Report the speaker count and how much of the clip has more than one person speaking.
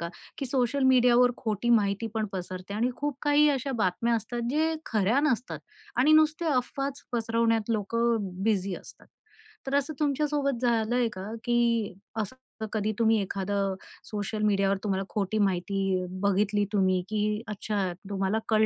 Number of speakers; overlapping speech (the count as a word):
one, no overlap